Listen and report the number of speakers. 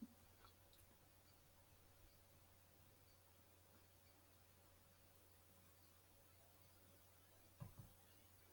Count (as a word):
zero